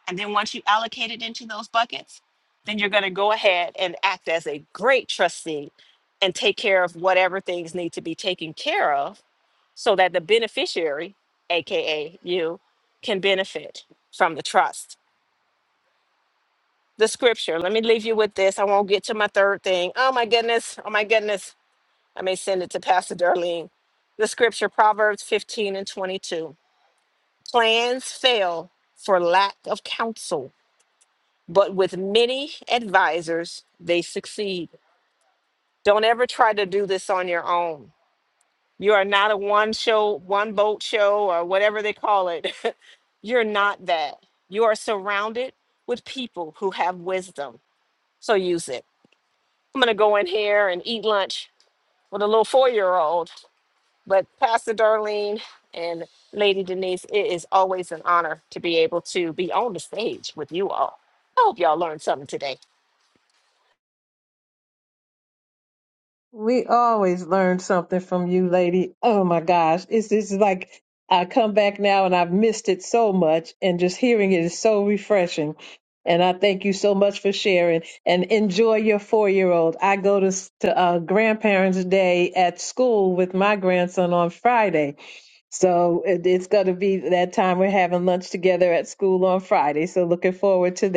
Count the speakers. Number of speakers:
2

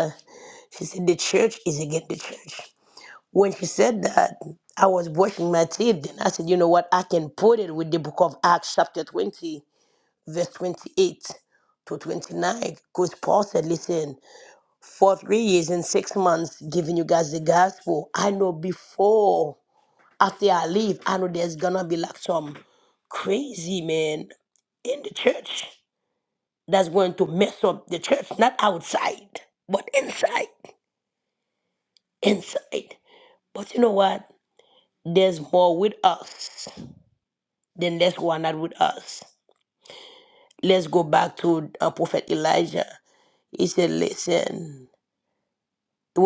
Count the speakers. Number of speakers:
1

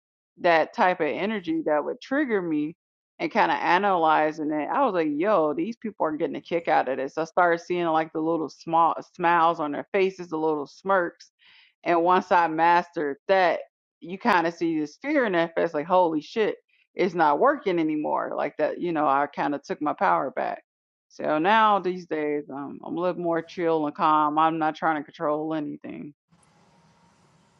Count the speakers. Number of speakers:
1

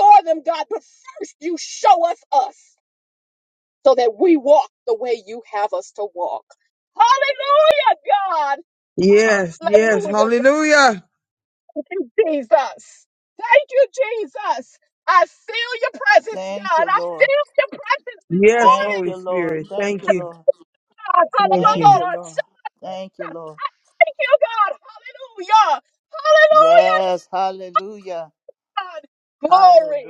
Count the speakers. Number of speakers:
3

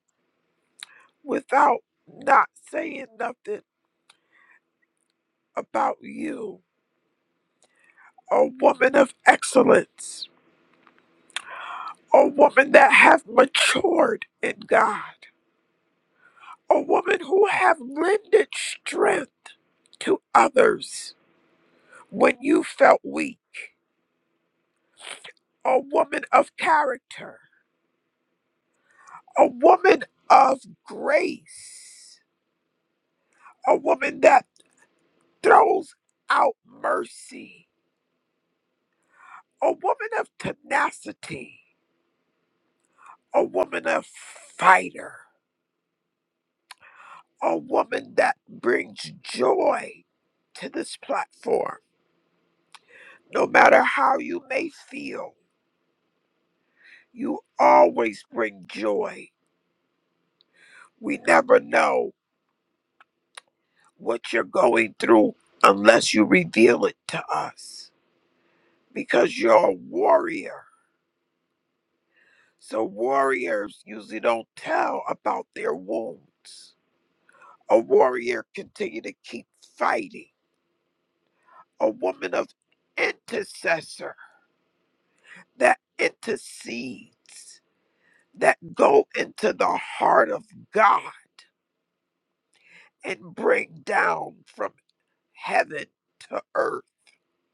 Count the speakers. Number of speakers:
1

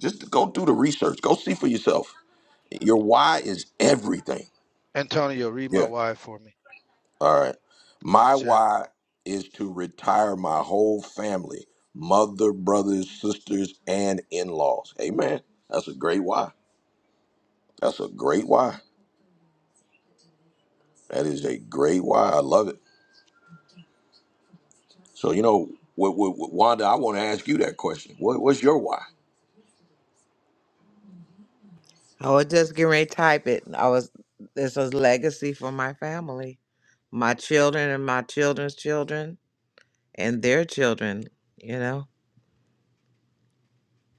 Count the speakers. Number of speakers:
3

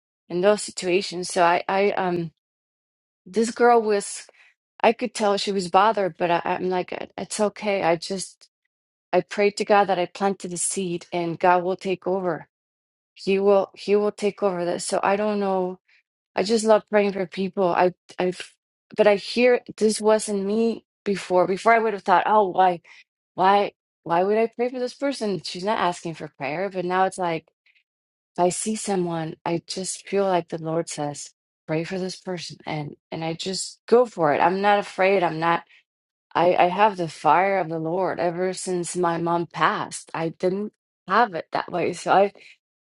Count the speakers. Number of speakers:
1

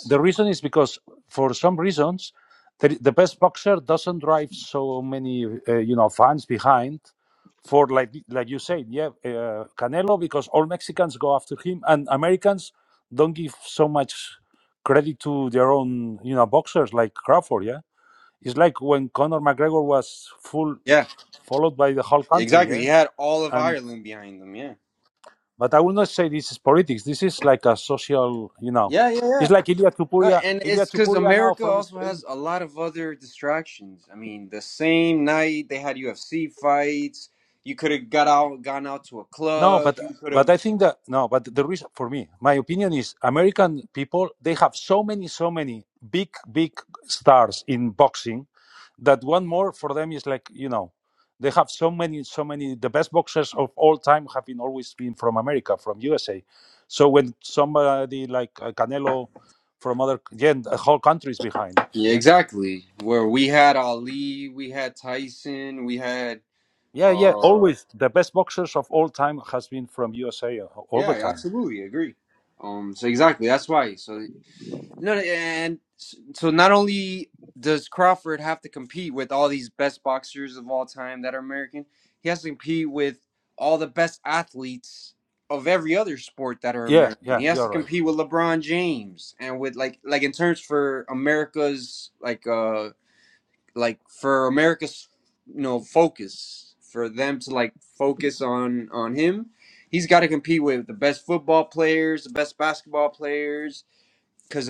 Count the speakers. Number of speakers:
2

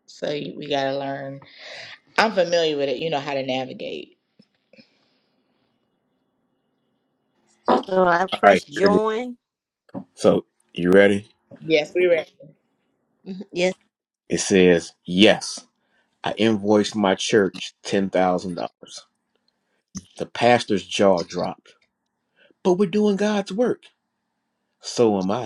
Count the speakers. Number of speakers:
3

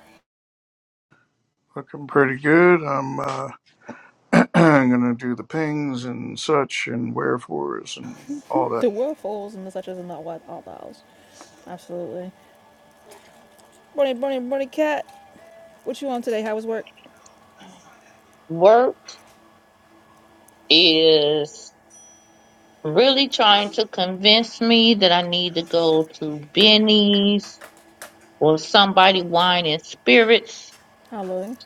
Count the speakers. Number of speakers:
3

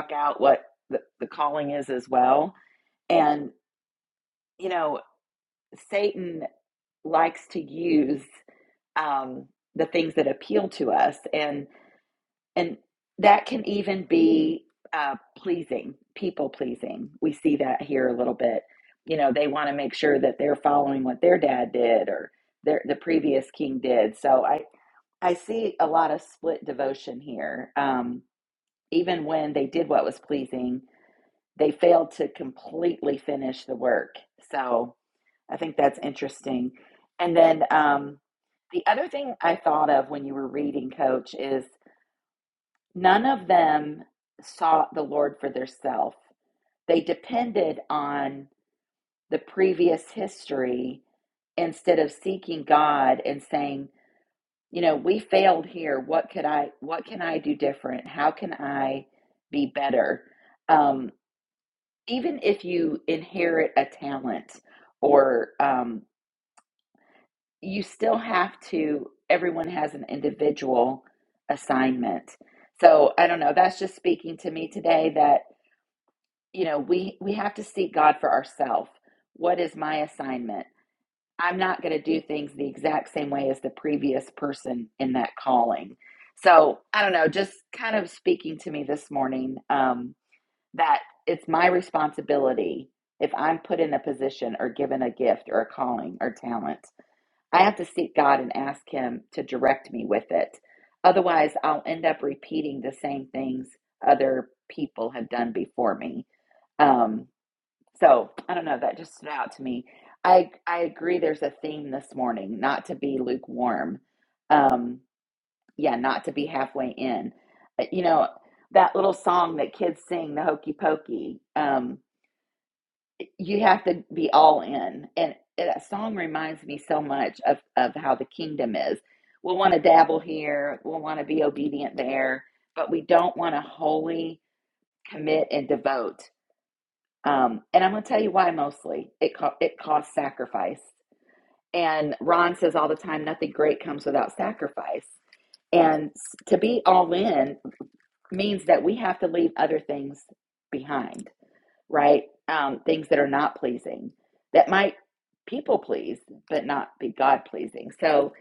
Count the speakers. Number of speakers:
1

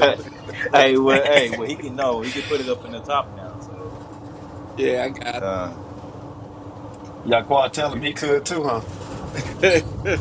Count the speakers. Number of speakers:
3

